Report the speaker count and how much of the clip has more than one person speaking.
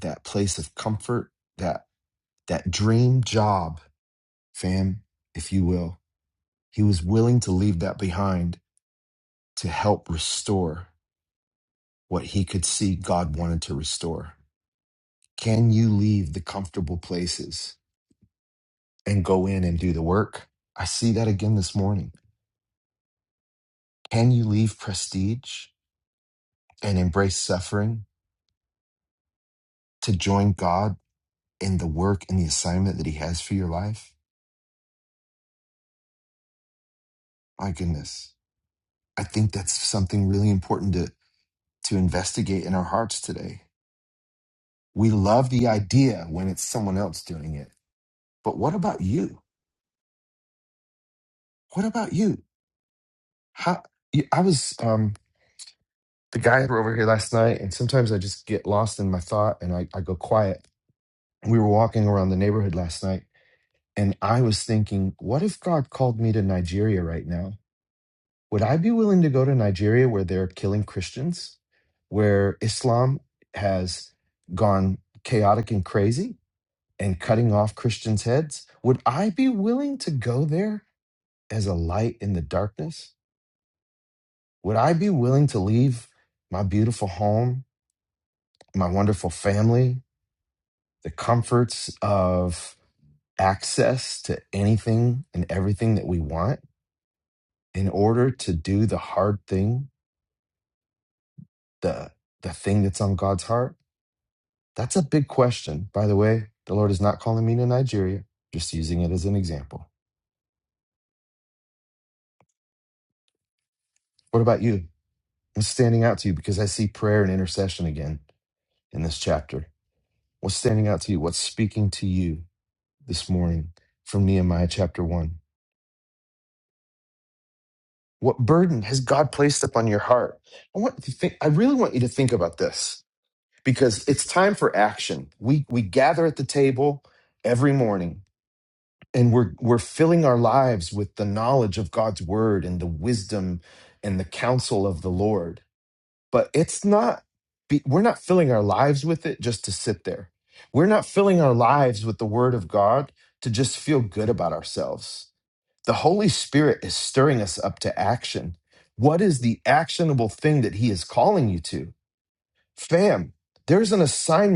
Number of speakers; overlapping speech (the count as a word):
one, no overlap